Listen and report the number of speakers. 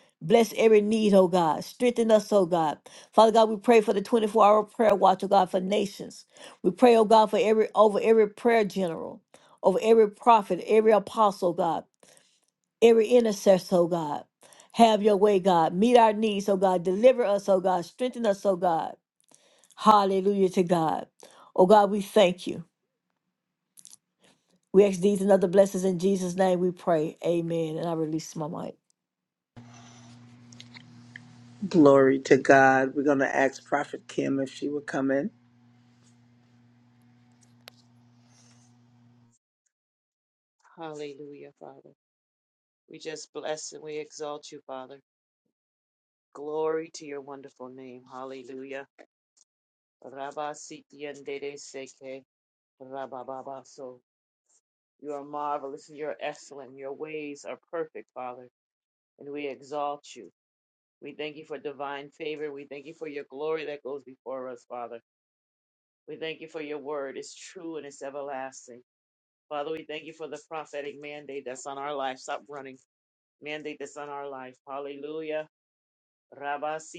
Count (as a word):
three